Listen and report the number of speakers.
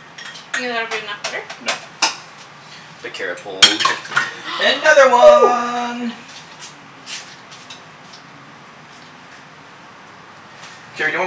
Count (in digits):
2